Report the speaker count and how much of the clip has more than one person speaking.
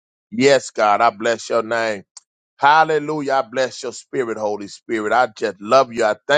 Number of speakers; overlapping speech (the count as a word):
one, no overlap